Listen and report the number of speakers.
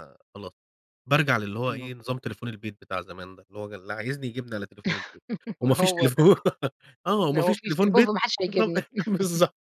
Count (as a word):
two